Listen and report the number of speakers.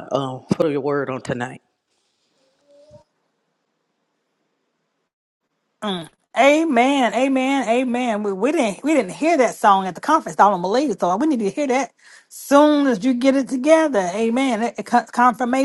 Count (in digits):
2